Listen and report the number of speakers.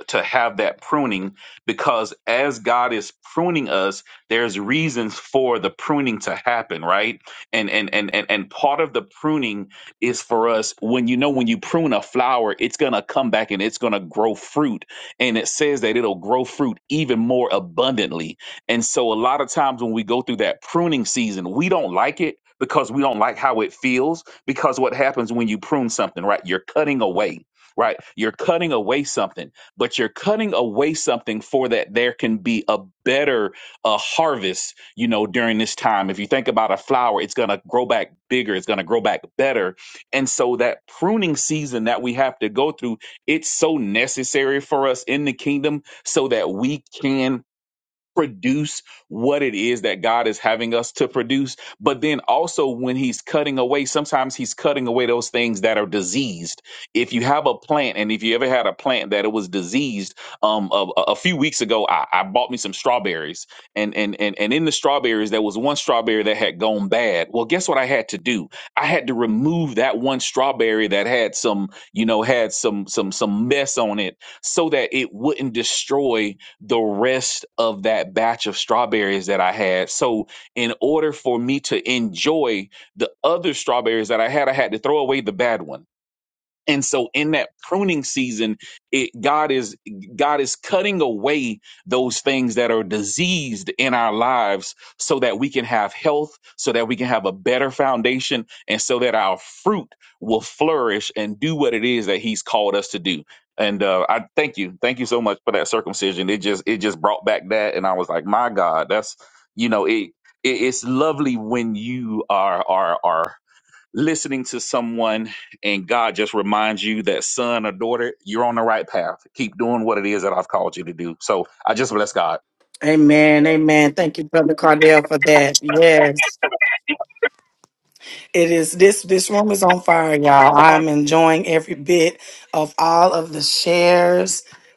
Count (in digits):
2